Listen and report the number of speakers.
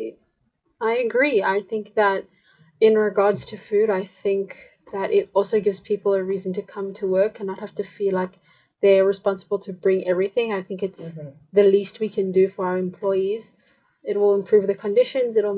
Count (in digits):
1